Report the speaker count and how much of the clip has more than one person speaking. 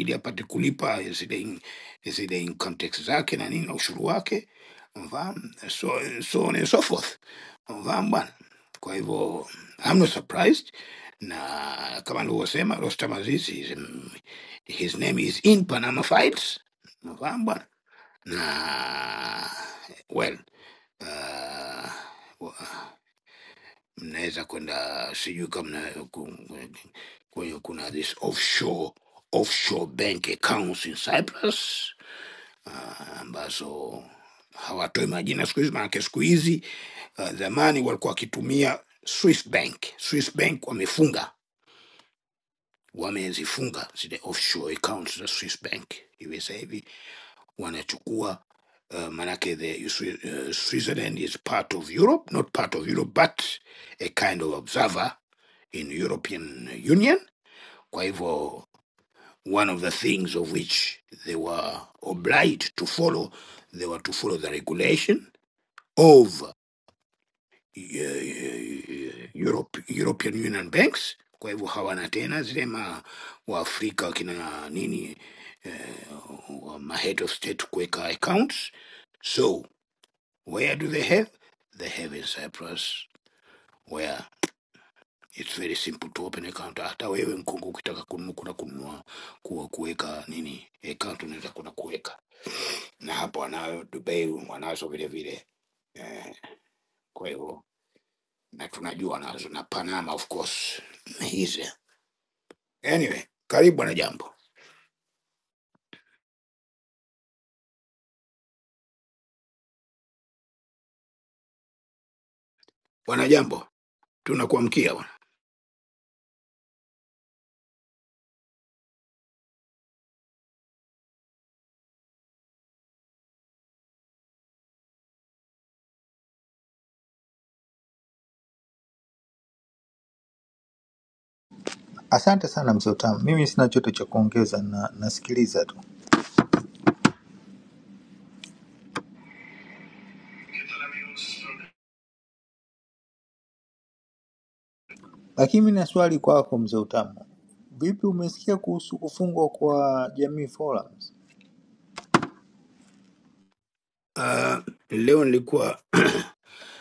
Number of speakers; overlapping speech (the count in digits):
2, no overlap